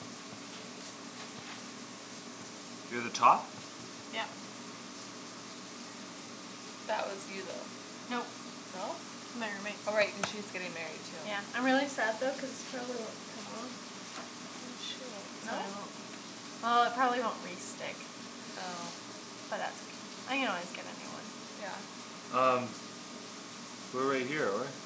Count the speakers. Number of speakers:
three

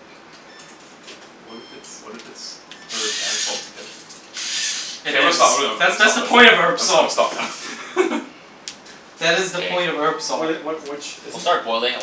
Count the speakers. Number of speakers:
four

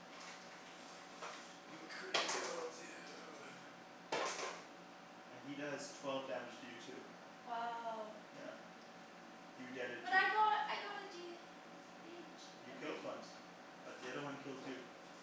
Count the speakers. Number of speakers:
three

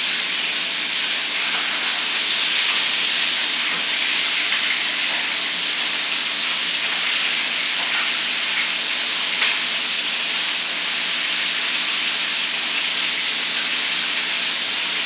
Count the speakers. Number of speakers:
zero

